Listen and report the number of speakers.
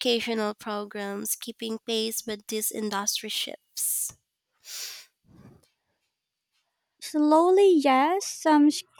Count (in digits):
2